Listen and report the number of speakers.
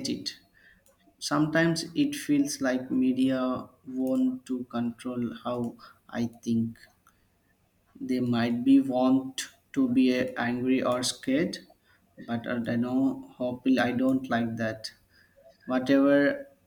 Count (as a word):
one